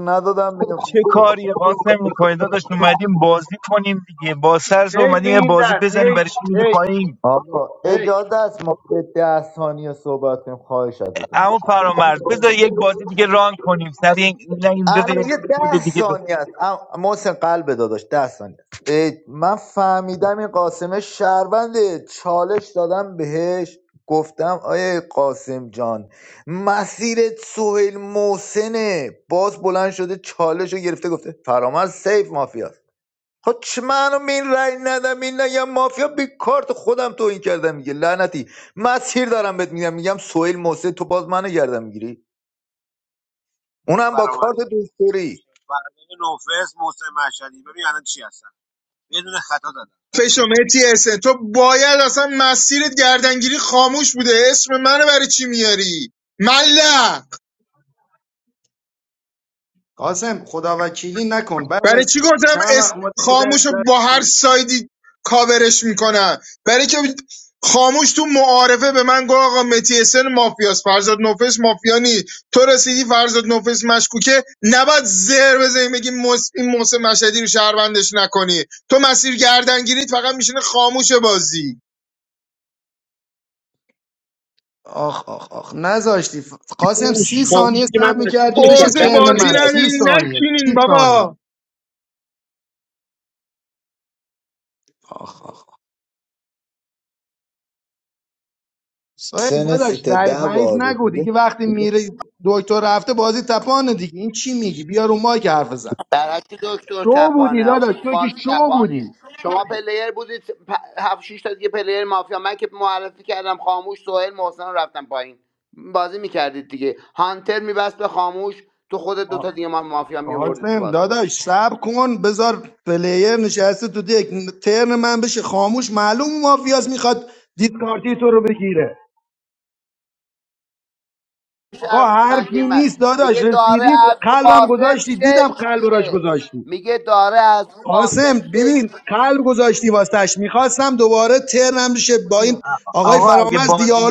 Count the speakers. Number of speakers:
six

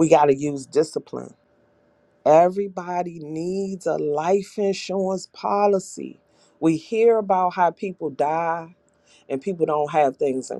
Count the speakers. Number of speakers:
one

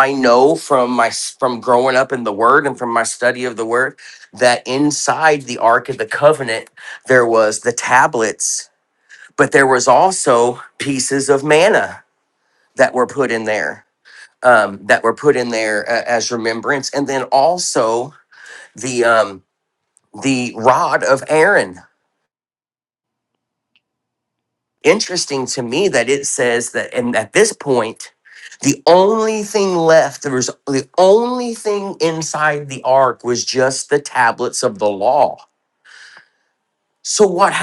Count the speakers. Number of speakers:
one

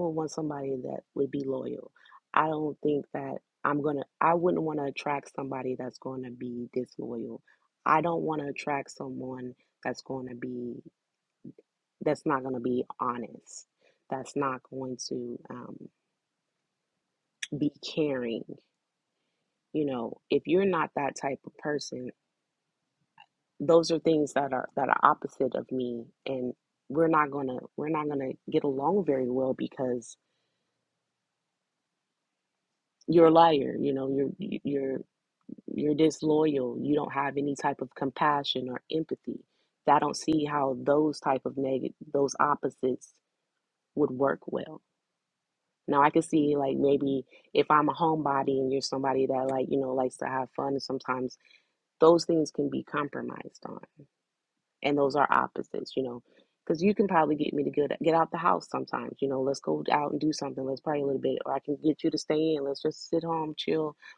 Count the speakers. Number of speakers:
one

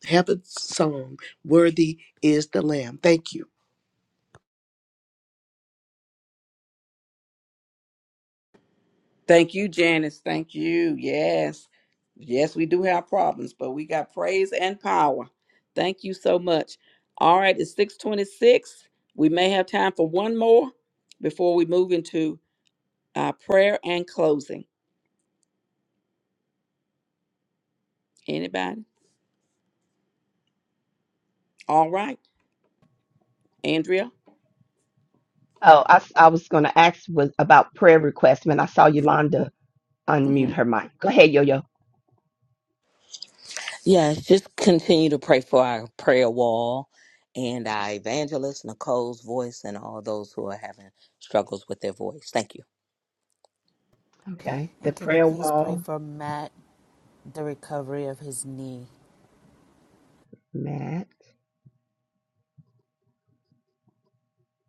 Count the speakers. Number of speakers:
five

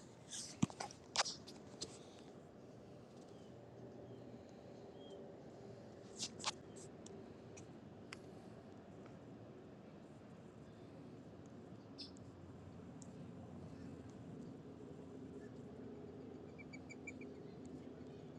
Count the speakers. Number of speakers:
zero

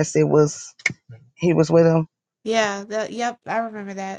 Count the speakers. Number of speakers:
two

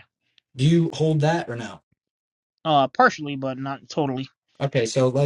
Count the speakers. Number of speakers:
two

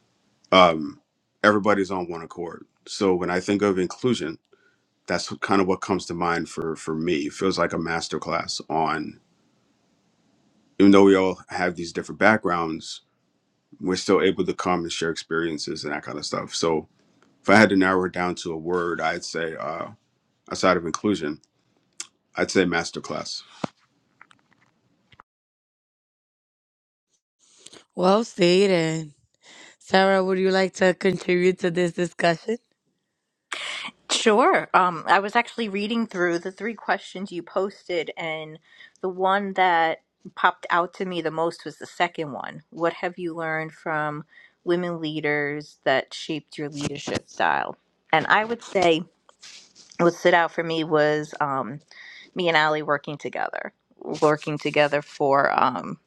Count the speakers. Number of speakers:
three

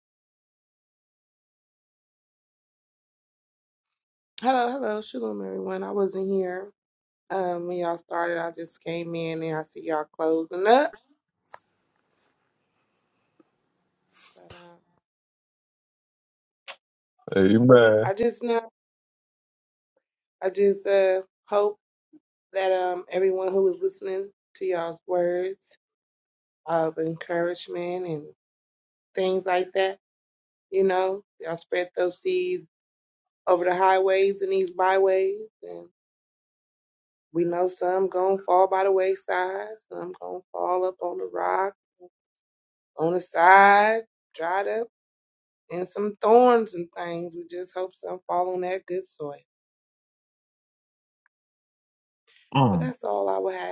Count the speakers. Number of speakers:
two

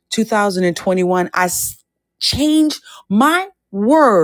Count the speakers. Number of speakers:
one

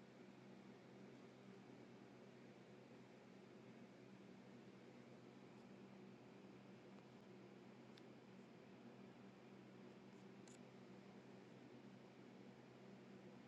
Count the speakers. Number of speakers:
zero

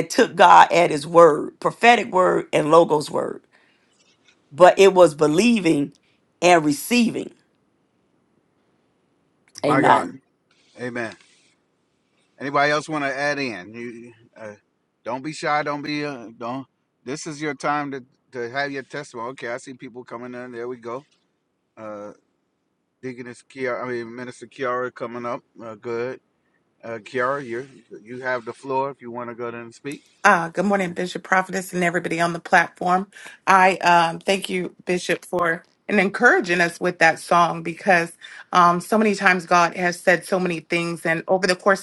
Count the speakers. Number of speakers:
three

